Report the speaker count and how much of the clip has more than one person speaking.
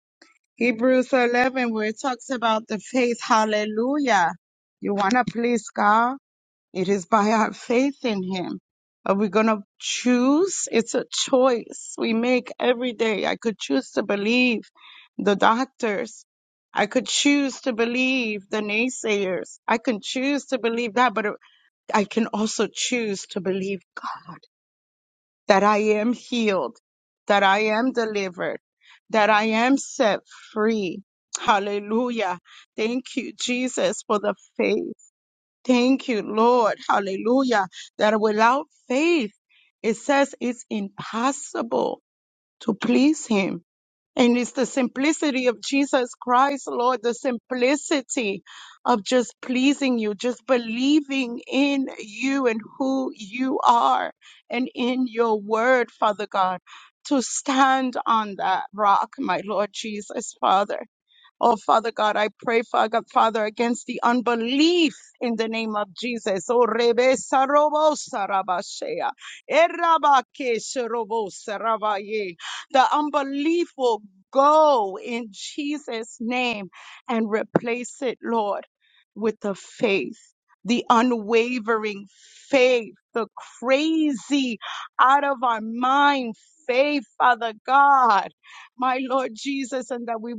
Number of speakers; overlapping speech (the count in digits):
1, no overlap